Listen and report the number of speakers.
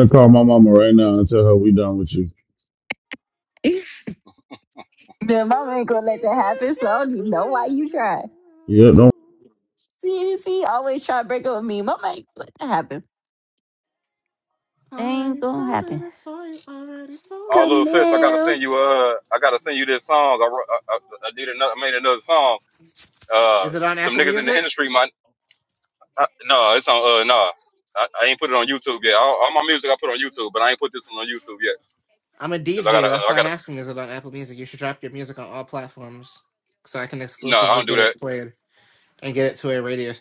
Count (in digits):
4